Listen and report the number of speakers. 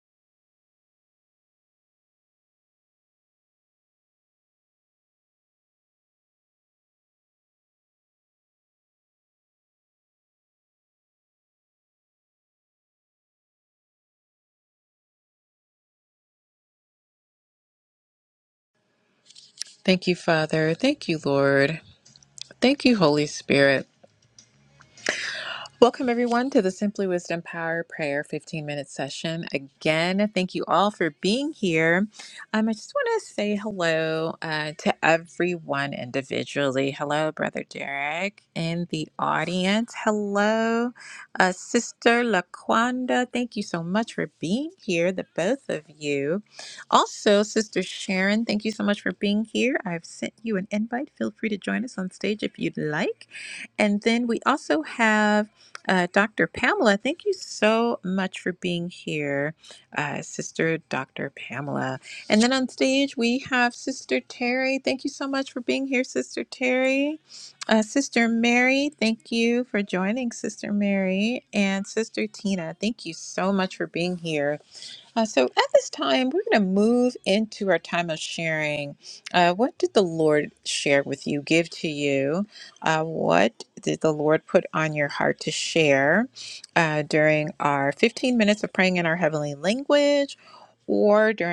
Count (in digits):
1